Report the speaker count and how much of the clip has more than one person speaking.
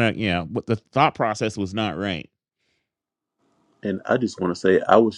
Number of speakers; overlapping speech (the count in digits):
2, no overlap